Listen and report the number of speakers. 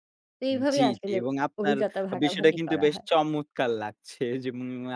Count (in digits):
2